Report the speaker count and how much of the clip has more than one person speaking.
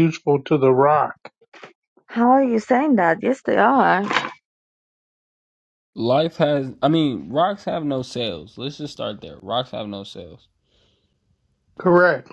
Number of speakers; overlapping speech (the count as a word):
three, no overlap